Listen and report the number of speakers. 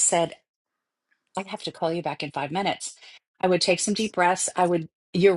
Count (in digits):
1